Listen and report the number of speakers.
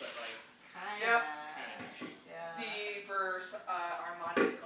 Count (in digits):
3